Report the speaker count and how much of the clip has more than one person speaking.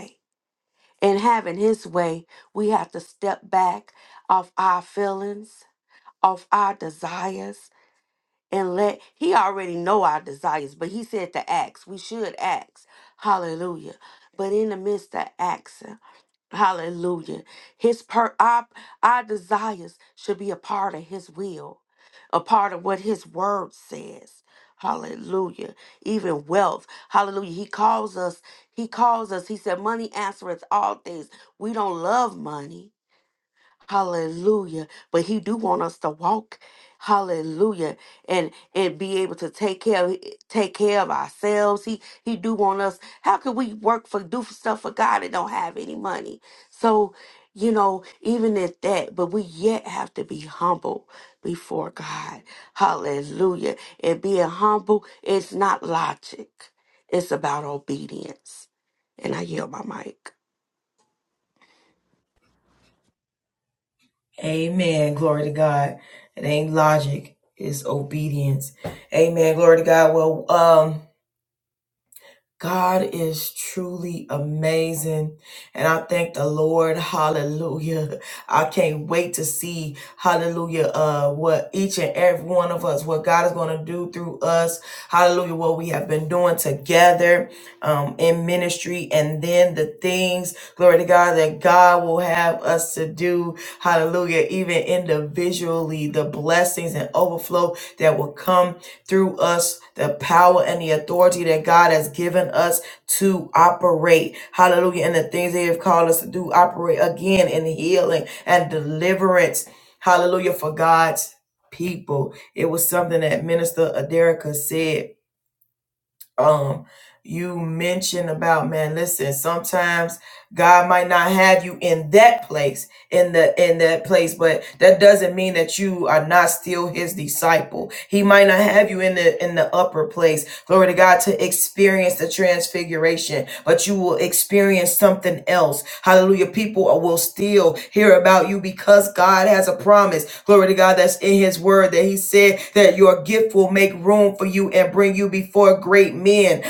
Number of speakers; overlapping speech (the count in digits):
2, no overlap